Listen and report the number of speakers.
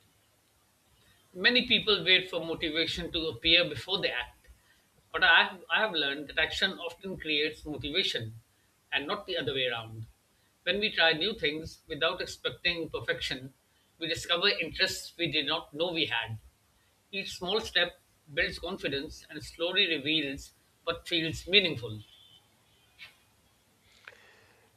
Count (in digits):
1